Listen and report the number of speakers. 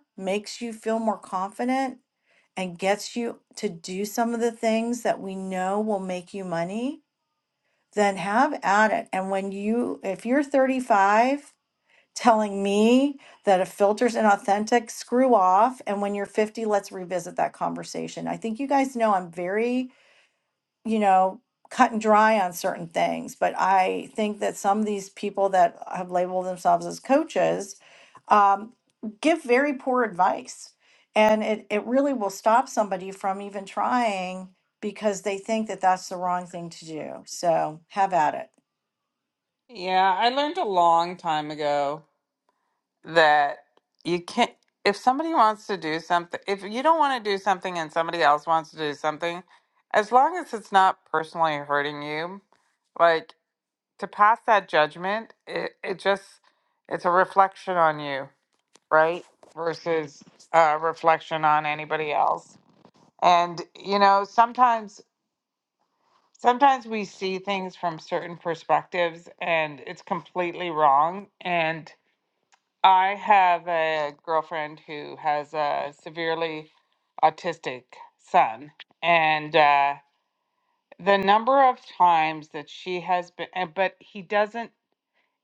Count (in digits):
2